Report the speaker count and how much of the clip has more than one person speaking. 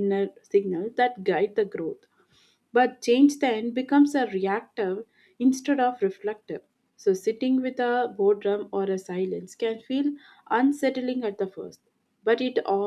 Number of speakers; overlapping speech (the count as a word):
one, no overlap